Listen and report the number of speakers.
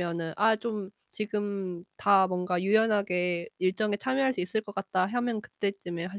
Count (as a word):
one